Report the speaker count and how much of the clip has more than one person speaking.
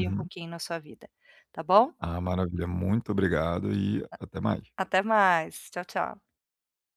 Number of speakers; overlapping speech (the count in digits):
2, about 5%